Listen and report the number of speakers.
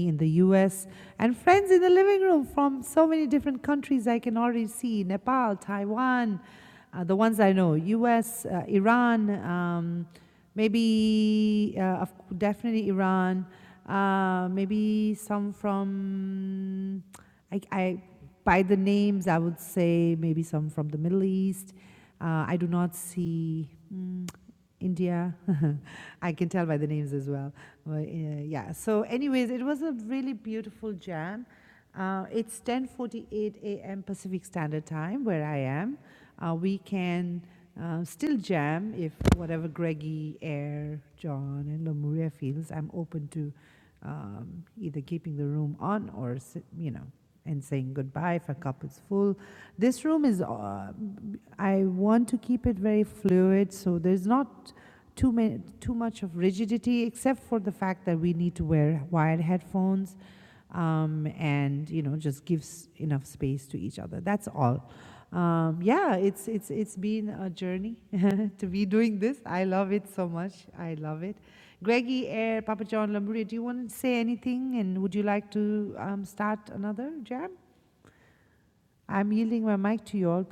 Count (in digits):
1